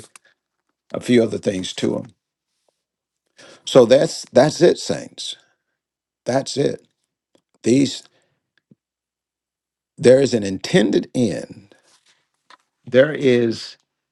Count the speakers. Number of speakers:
1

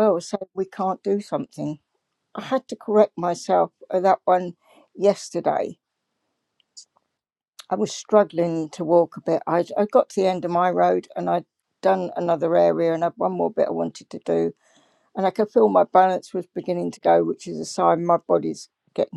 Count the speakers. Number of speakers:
1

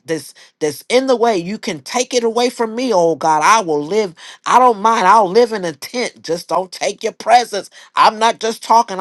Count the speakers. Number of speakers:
1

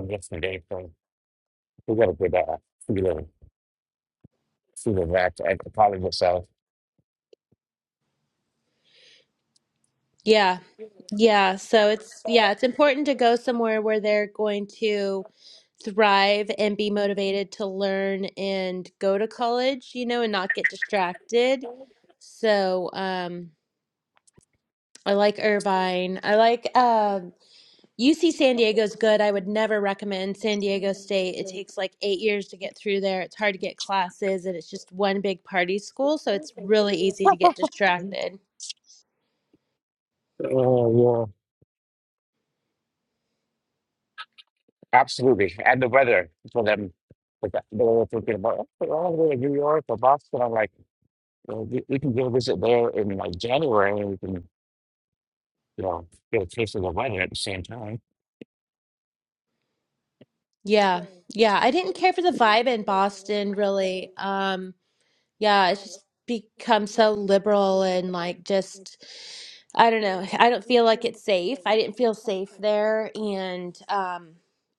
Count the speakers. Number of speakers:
2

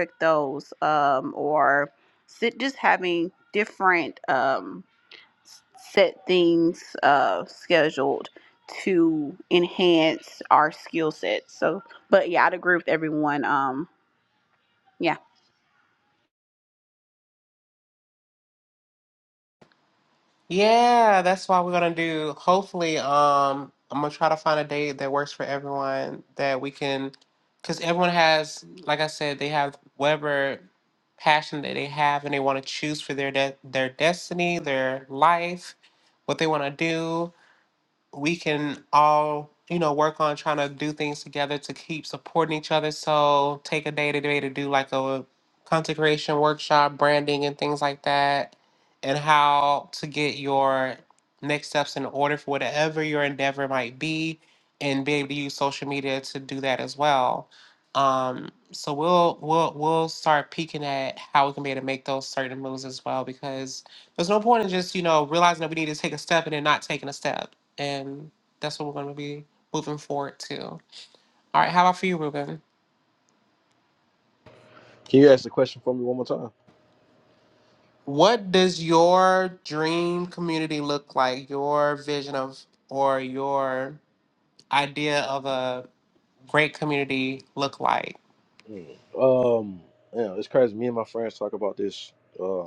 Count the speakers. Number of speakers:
3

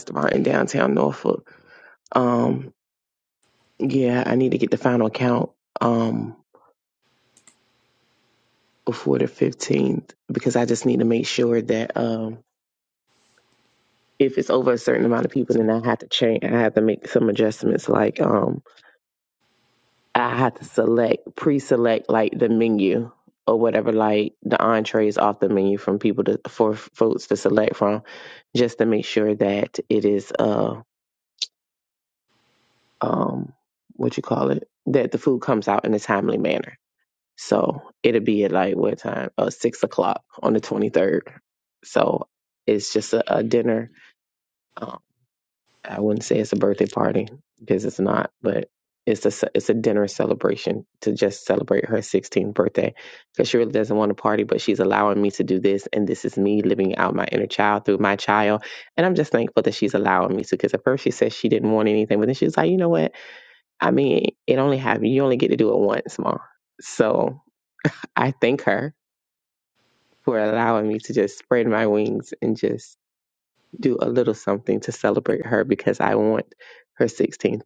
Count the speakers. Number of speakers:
1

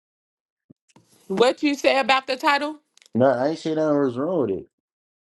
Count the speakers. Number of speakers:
2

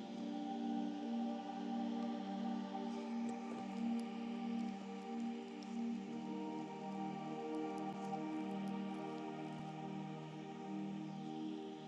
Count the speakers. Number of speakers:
0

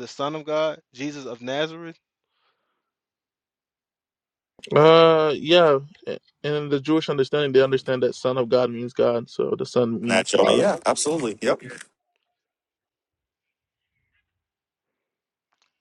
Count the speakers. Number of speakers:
3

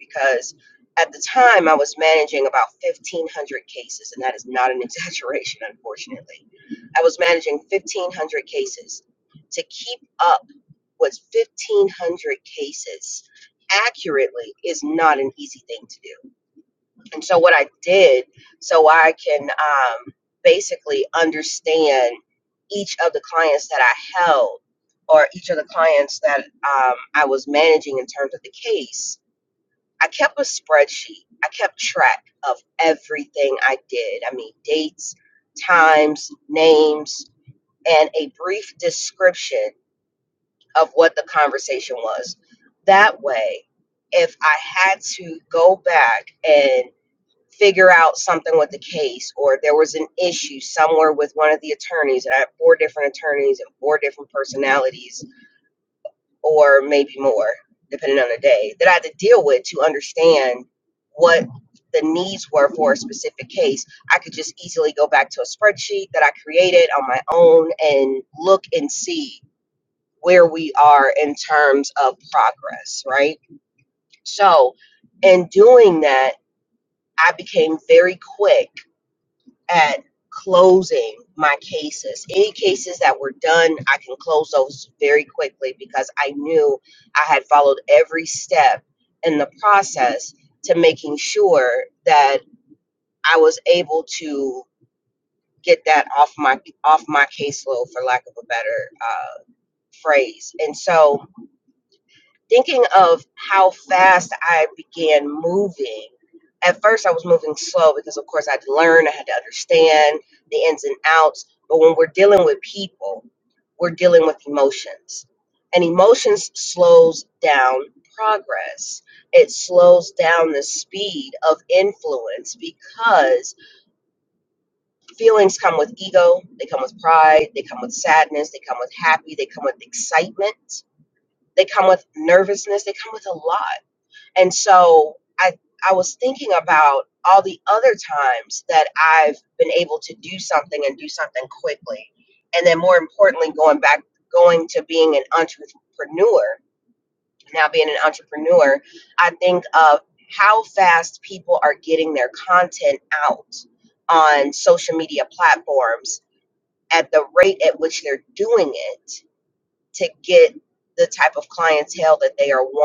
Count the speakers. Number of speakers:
1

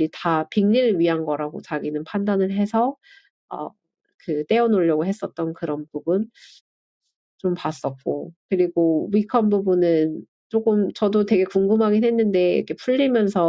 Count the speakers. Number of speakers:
1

